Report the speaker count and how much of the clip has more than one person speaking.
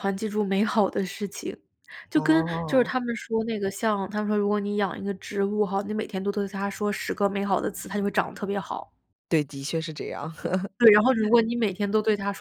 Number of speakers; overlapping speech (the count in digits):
2, about 6%